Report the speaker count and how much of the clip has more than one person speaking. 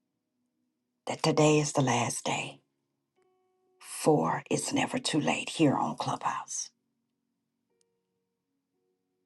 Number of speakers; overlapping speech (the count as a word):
one, no overlap